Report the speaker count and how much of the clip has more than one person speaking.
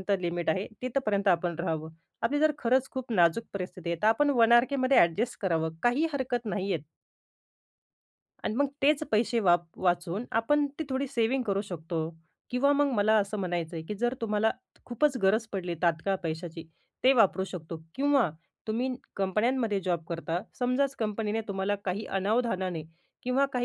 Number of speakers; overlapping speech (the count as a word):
one, no overlap